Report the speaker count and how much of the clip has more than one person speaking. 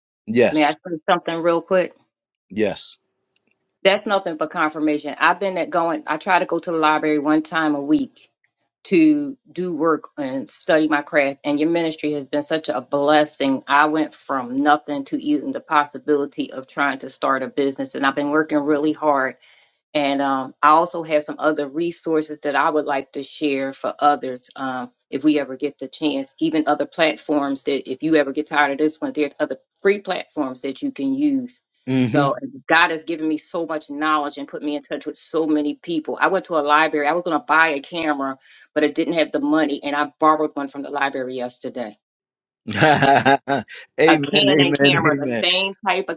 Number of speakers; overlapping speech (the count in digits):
2, about 4%